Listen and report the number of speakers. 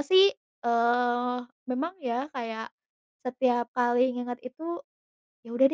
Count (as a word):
one